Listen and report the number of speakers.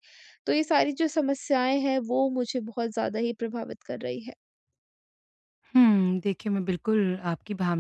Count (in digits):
2